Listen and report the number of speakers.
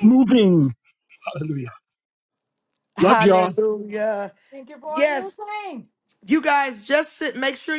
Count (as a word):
three